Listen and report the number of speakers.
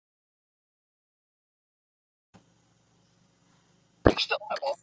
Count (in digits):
0